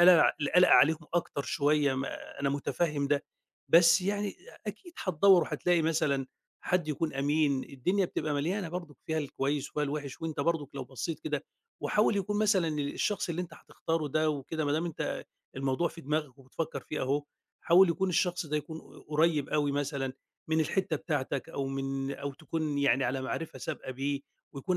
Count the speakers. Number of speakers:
one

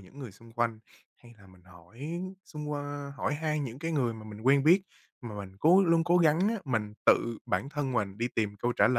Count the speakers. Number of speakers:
one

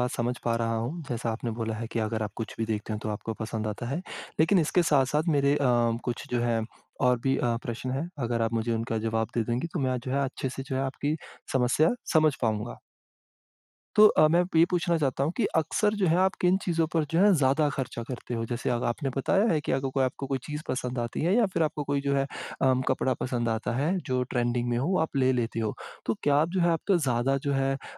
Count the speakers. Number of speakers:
one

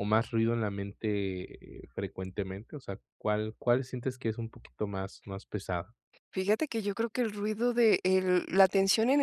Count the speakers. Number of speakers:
two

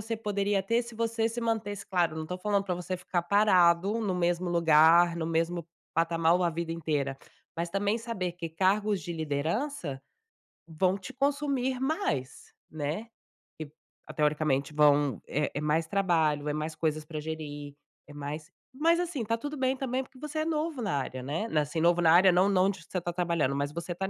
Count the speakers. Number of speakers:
one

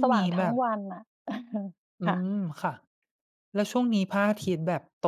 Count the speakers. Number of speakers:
two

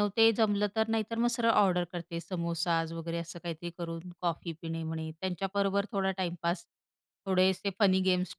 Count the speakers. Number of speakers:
one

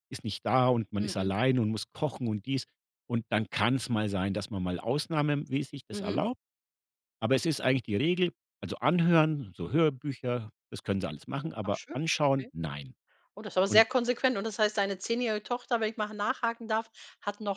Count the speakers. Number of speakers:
two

